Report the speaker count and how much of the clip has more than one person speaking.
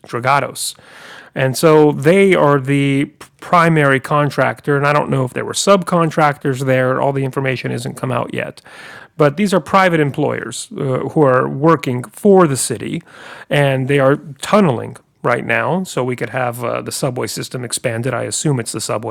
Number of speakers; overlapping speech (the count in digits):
1, no overlap